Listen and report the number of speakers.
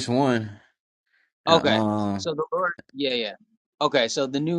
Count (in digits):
2